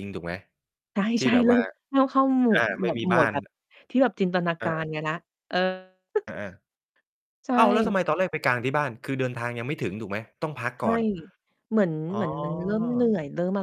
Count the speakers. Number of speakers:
2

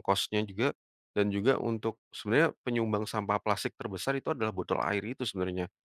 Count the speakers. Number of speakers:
1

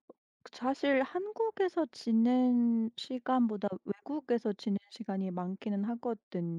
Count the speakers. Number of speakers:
1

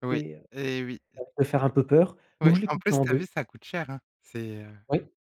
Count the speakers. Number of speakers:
2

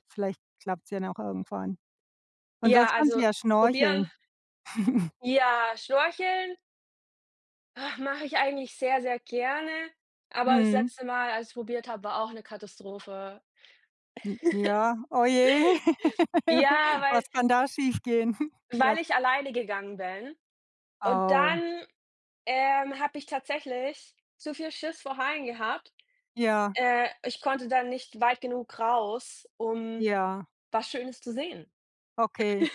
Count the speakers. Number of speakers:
2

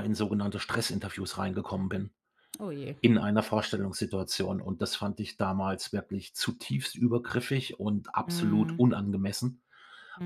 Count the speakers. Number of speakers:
2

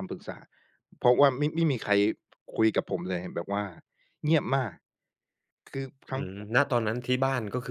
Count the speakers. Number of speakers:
2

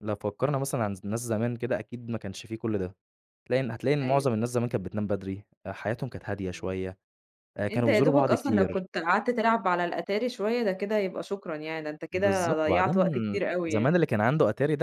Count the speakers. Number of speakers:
2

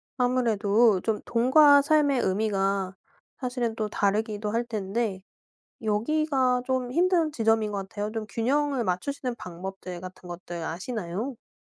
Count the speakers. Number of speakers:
1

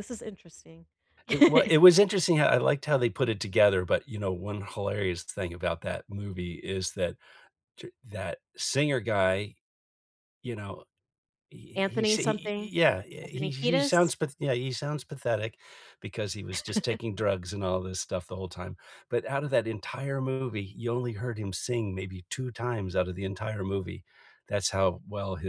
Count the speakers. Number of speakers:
2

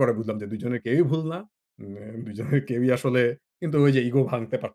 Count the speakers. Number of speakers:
1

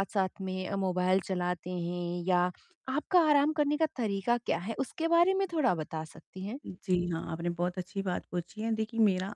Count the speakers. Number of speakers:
2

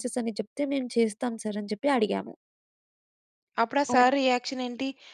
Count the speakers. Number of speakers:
2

